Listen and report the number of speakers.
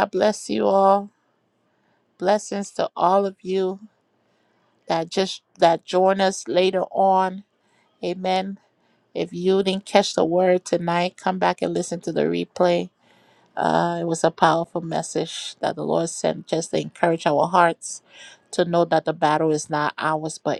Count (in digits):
1